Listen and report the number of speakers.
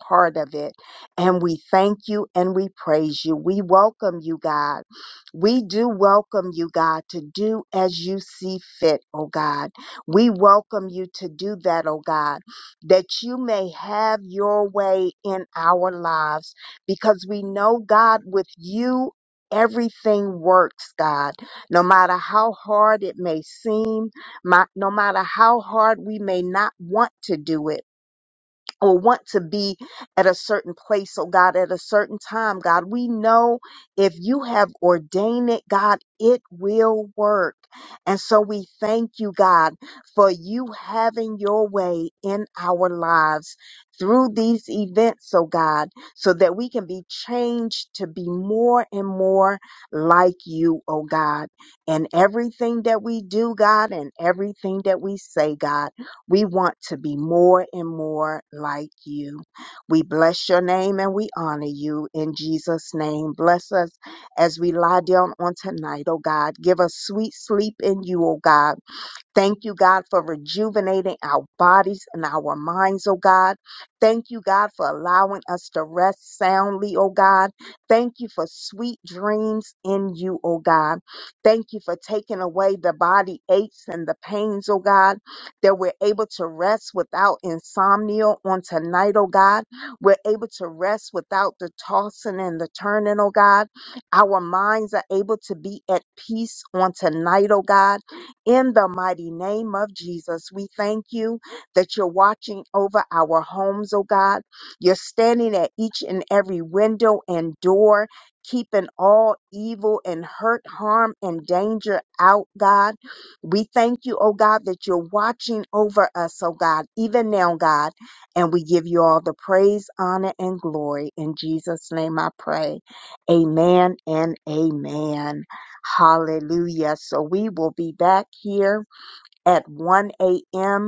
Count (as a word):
one